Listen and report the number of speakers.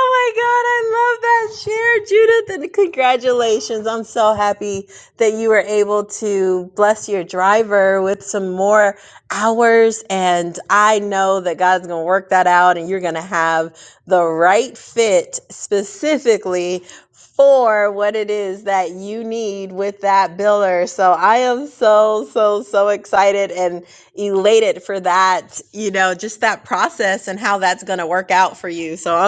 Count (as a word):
one